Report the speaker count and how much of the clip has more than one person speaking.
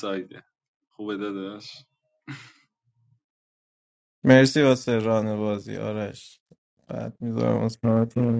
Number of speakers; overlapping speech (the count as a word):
two, no overlap